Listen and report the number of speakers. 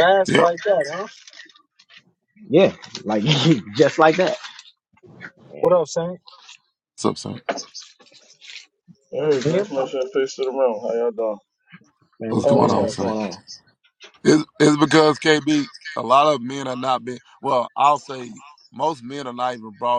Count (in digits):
4